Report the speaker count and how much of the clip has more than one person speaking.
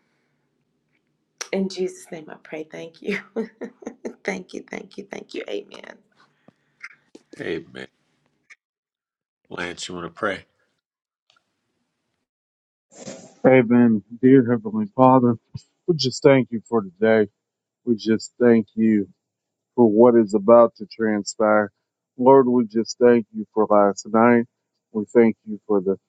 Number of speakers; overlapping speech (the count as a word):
three, no overlap